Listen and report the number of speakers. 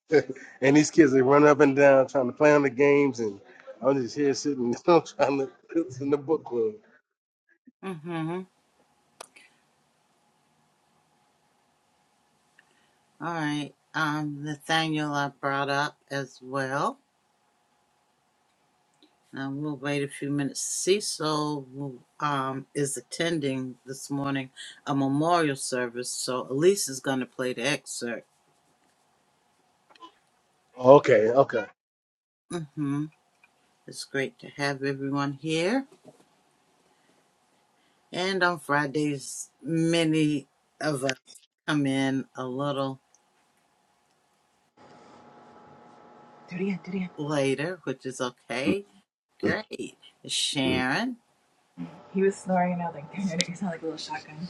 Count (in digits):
3